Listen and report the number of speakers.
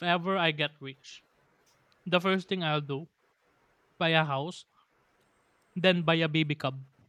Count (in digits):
1